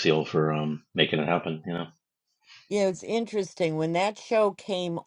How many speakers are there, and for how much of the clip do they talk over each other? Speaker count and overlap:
two, no overlap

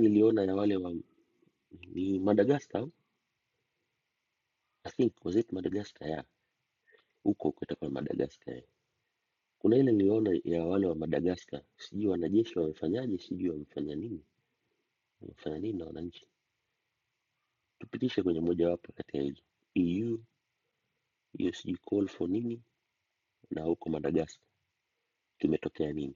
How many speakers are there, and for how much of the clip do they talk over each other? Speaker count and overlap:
one, no overlap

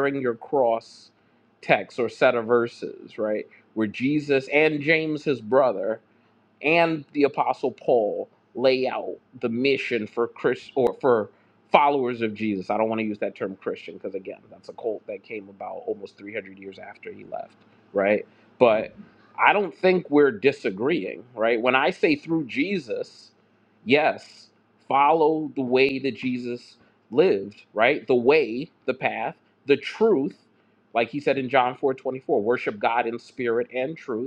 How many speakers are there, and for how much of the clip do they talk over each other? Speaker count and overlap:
one, no overlap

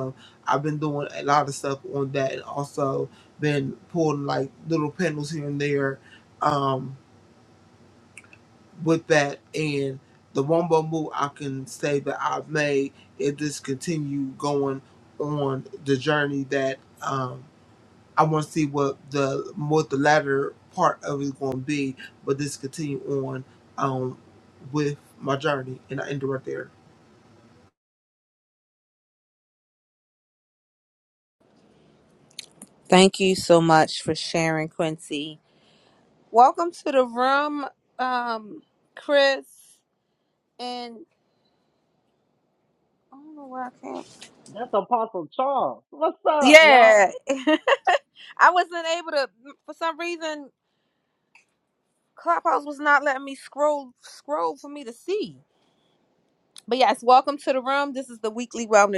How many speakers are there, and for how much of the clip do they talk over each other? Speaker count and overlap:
three, about 1%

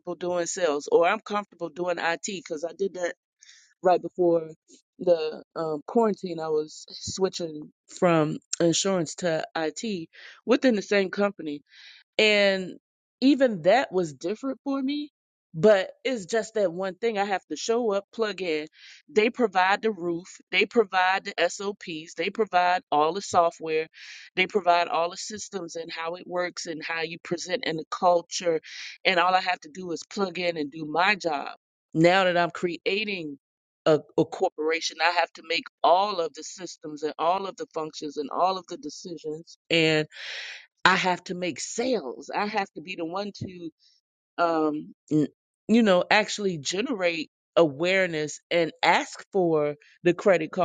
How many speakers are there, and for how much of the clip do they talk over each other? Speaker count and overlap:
one, no overlap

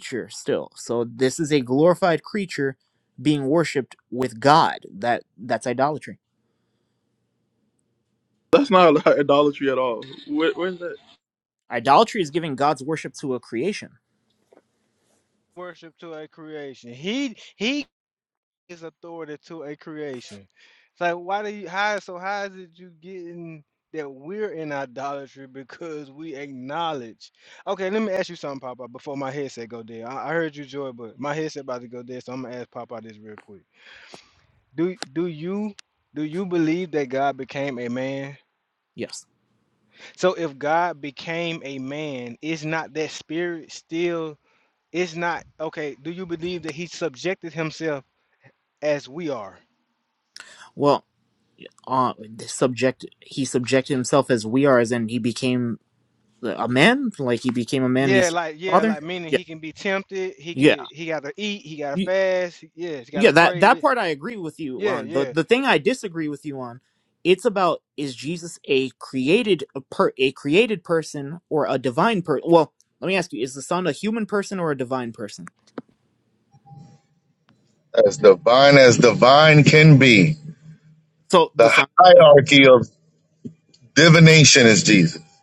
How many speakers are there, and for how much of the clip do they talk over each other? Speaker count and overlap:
four, about 4%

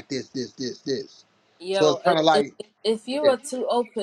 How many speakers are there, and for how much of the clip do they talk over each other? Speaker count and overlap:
two, about 21%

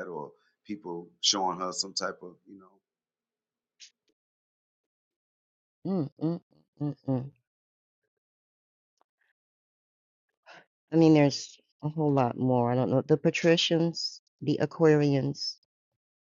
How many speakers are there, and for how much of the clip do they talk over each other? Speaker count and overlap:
two, no overlap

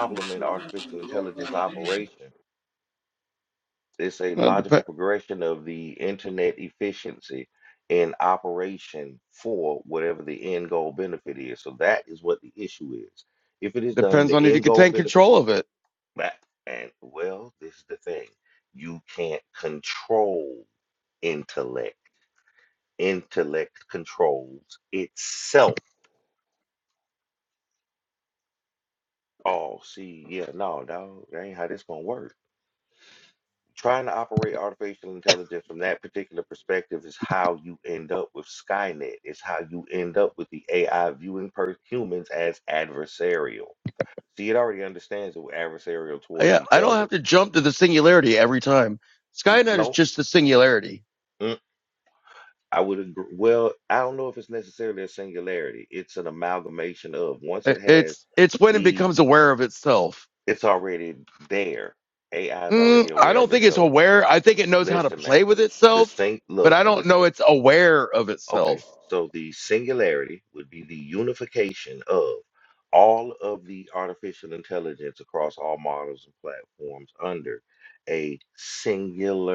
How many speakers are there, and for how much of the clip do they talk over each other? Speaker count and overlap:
two, about 8%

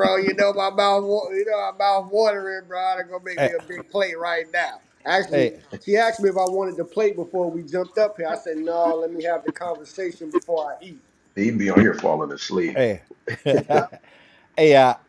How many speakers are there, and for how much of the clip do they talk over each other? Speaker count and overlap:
three, about 3%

